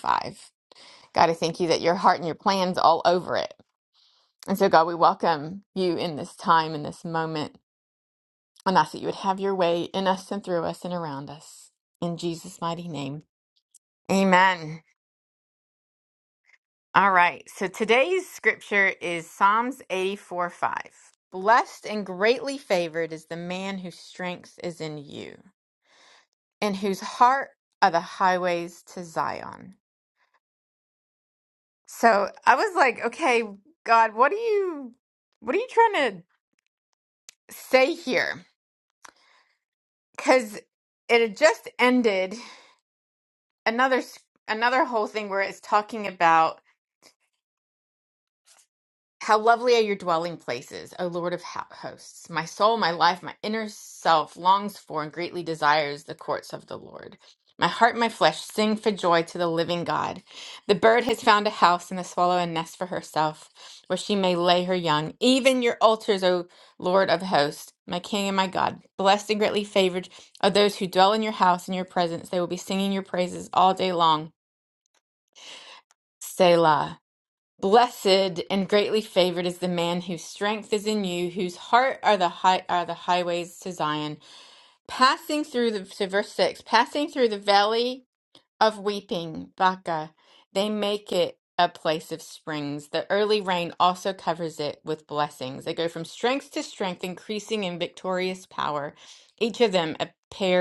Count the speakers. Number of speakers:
one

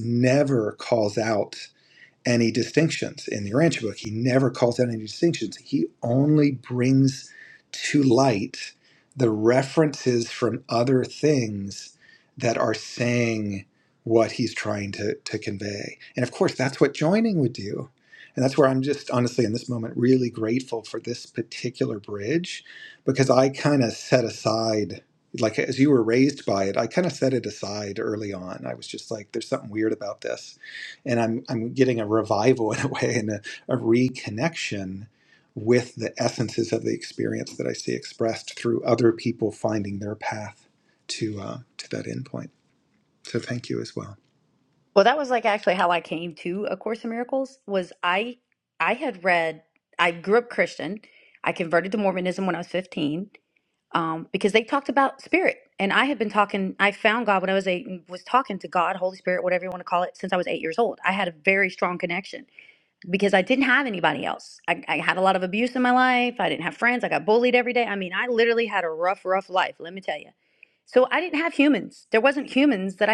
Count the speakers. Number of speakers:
two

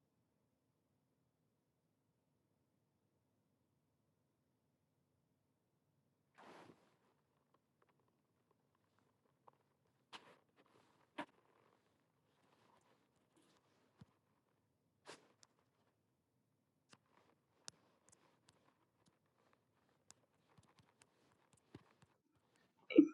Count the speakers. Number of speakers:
zero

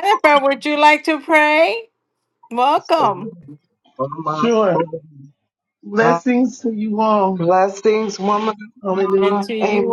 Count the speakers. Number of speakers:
three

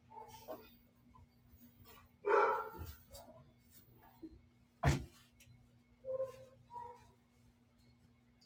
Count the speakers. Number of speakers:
zero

